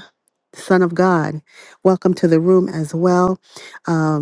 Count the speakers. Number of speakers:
1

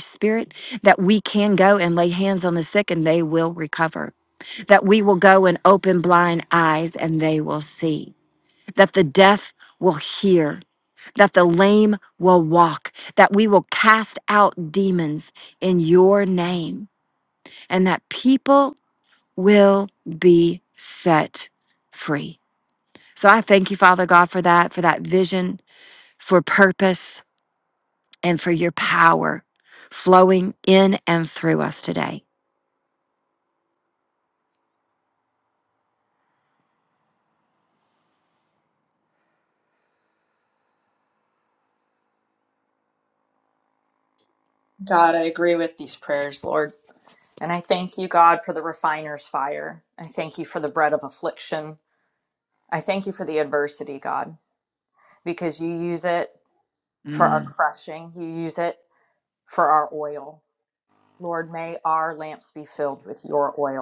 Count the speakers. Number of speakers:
2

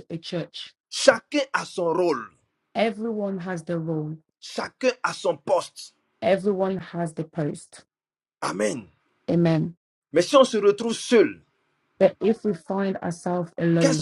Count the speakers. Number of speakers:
2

